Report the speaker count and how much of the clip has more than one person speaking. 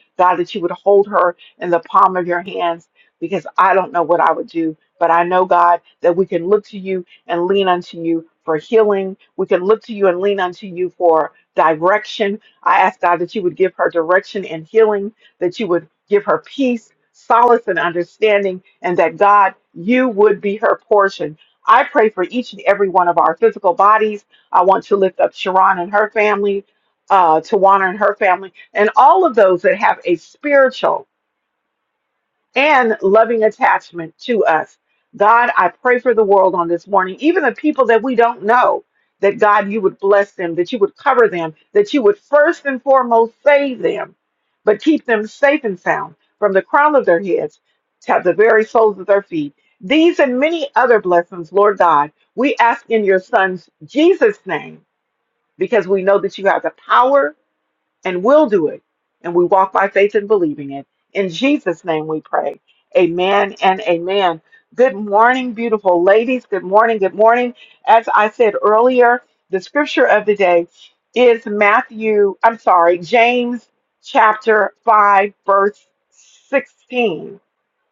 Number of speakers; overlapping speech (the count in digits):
1, no overlap